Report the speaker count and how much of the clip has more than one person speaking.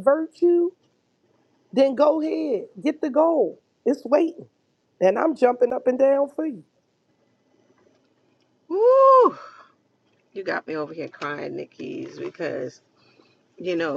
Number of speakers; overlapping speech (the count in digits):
2, no overlap